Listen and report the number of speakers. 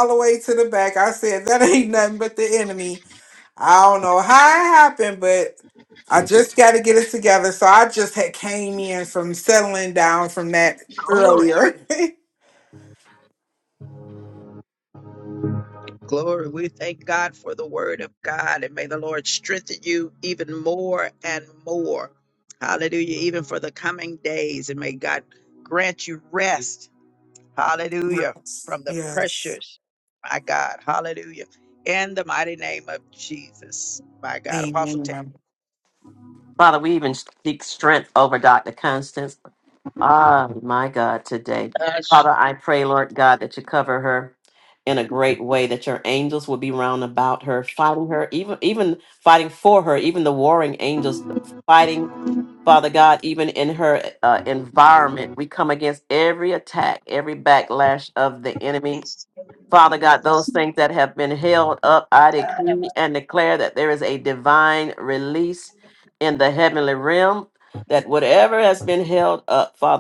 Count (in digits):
3